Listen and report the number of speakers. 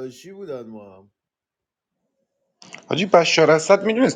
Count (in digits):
2